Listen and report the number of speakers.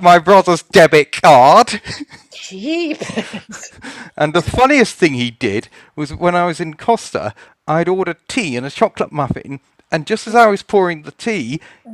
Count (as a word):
two